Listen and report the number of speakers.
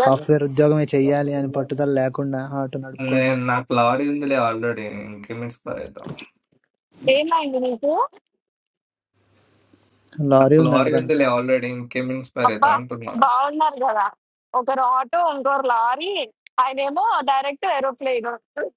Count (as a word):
three